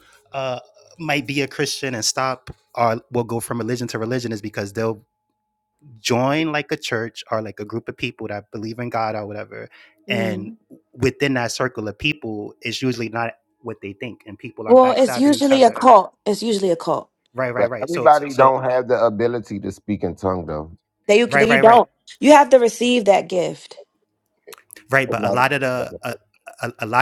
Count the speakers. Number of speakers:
three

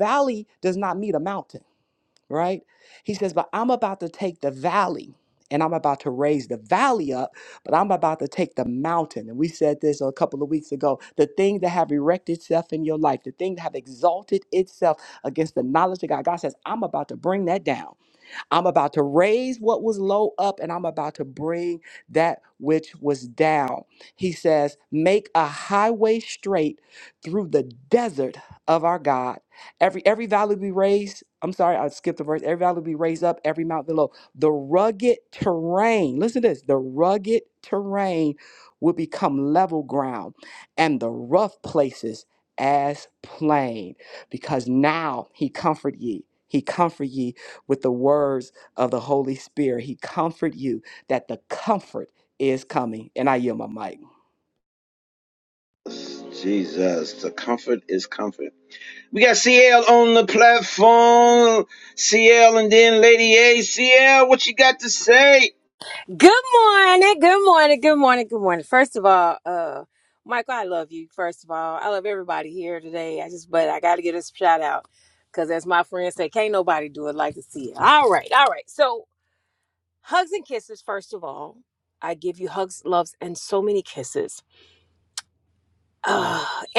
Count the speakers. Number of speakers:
three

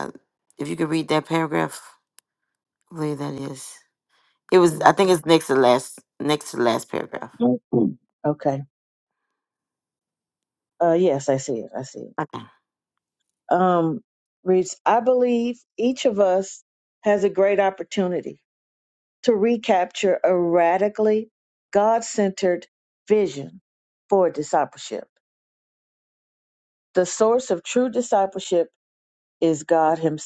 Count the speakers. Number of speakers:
two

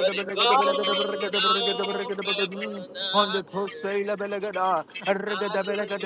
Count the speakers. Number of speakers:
two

